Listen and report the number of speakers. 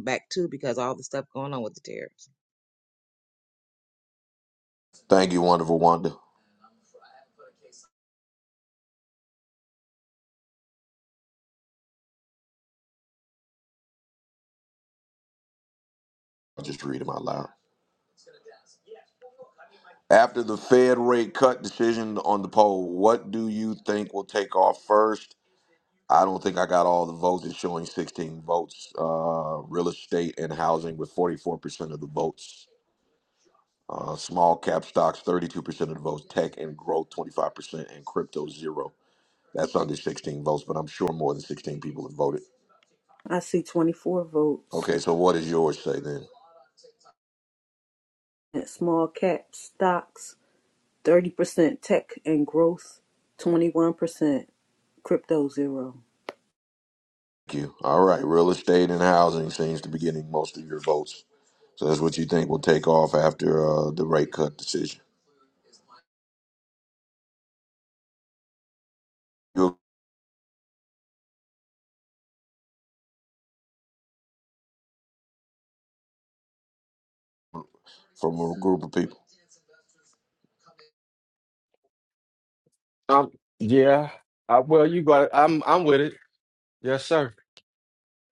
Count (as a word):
four